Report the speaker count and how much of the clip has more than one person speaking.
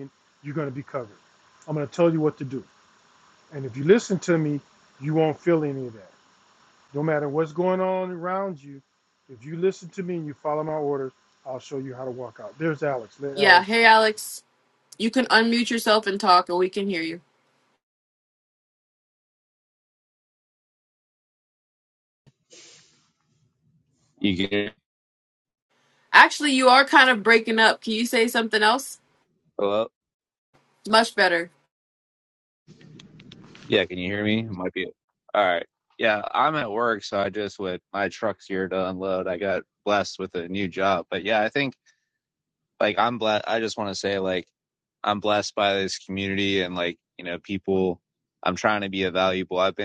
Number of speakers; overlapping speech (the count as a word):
three, about 1%